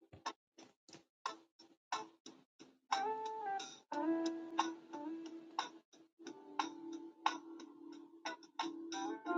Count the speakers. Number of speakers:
0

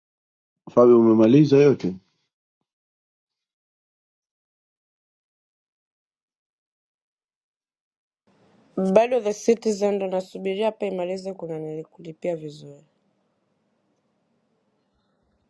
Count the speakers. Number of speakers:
2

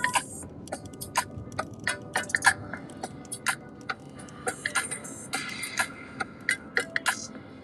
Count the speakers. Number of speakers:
0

